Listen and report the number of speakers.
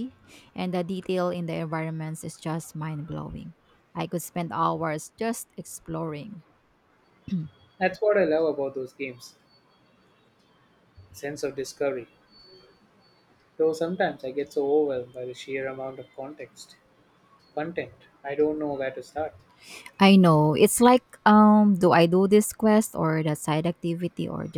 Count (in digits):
2